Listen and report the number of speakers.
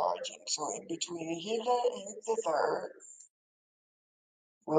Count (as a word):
one